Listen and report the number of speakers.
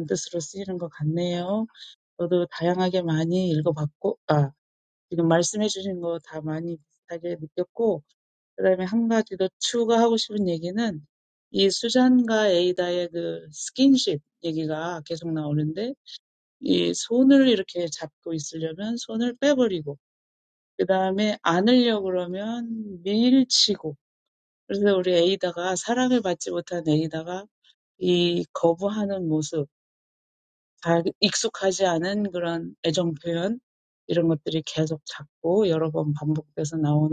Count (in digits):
1